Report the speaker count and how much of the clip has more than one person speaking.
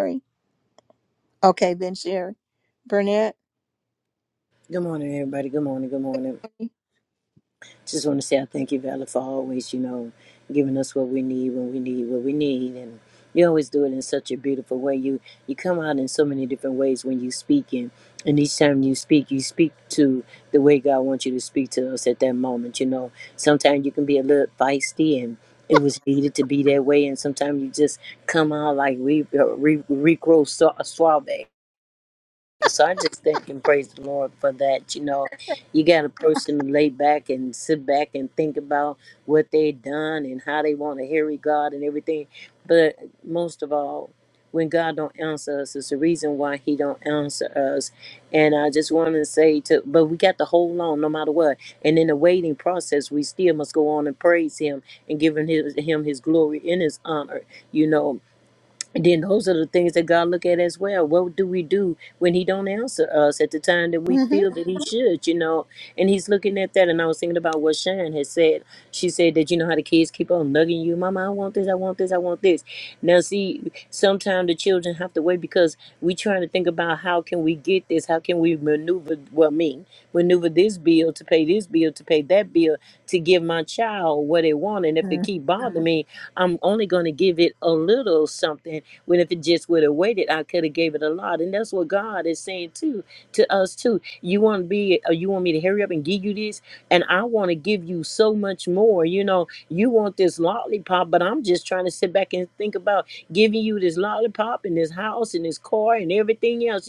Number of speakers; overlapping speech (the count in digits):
2, under 1%